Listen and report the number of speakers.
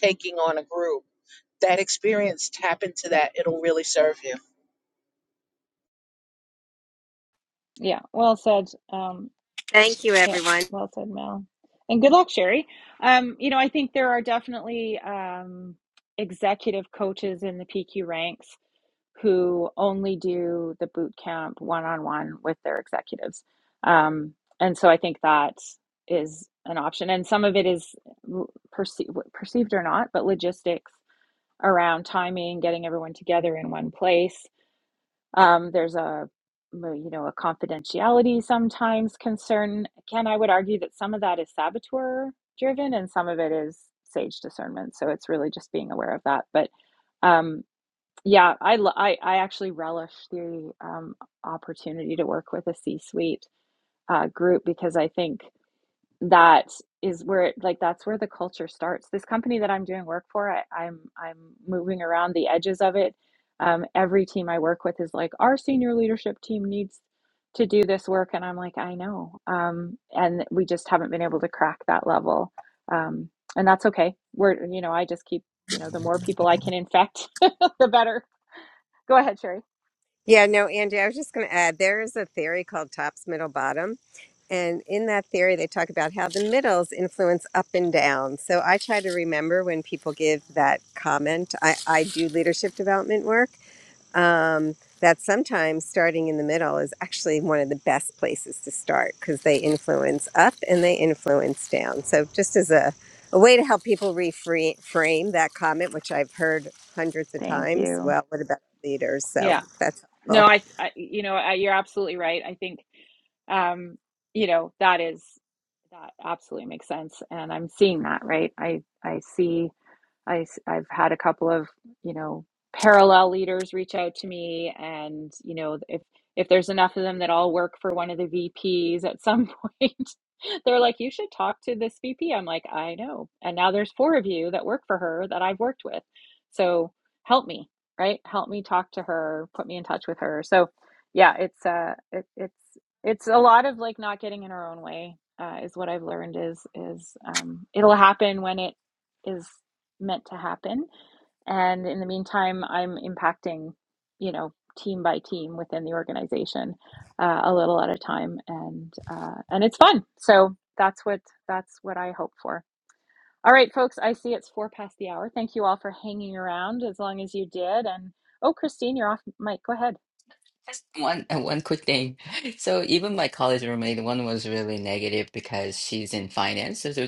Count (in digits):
4